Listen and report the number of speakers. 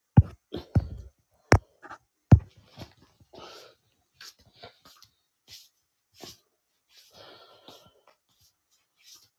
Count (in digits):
0